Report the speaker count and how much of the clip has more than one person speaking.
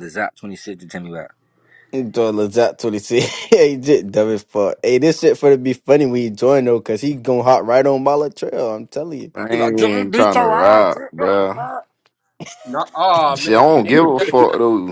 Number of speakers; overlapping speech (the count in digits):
4, about 22%